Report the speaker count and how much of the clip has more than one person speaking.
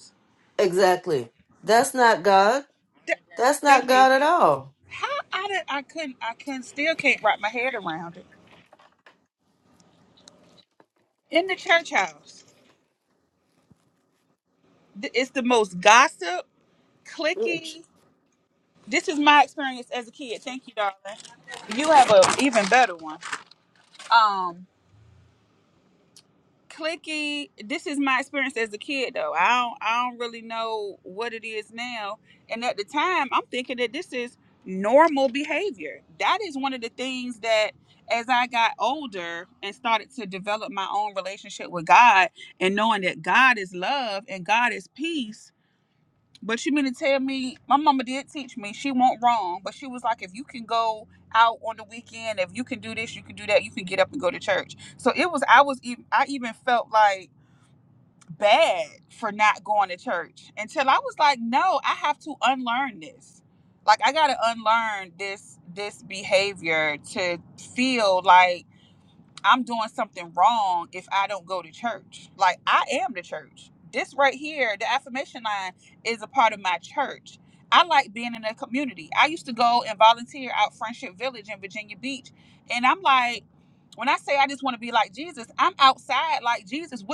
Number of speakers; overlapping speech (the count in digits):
2, about 1%